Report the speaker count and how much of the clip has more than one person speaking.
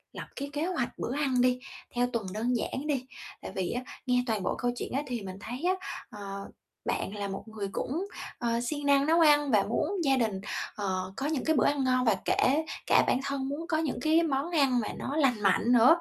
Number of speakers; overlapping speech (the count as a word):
one, no overlap